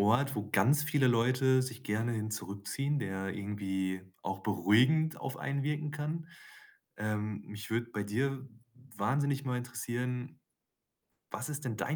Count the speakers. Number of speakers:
1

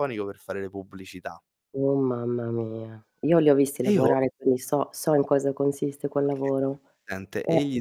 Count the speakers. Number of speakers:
2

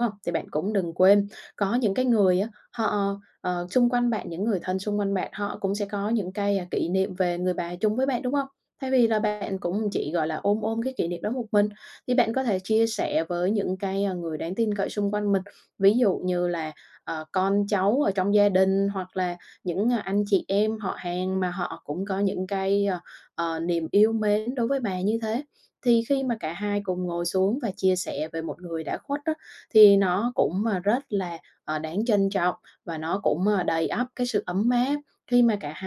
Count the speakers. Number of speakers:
1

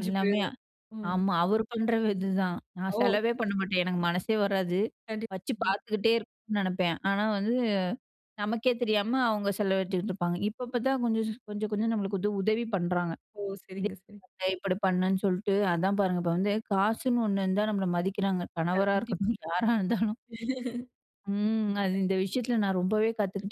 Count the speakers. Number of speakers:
2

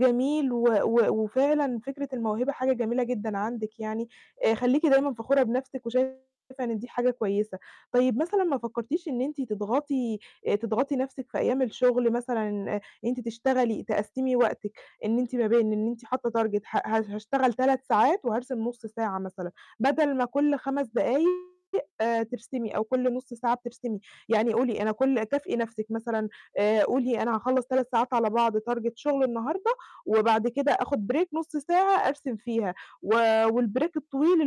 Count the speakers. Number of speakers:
1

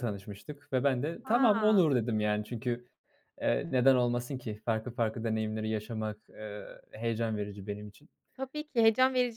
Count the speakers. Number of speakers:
2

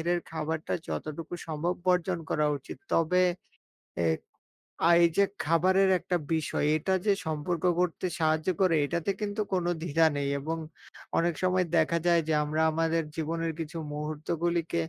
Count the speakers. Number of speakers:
1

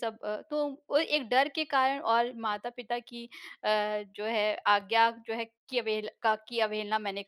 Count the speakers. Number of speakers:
1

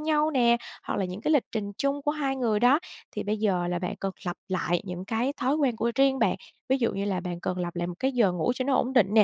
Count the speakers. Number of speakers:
1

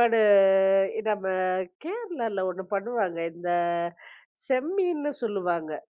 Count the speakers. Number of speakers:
1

